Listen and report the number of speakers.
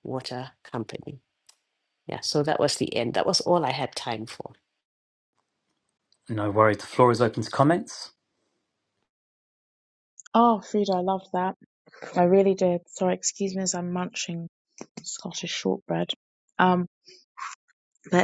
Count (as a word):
three